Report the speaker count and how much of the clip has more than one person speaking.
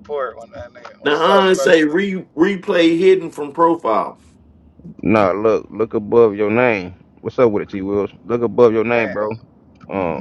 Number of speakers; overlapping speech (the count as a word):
three, about 11%